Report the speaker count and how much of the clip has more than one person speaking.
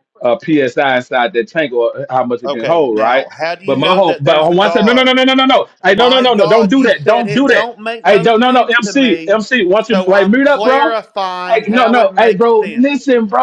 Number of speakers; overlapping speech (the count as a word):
two, about 58%